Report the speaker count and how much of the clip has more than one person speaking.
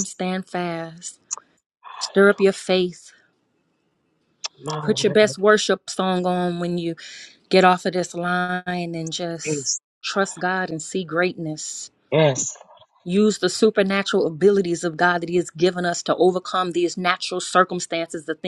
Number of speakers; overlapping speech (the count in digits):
2, about 3%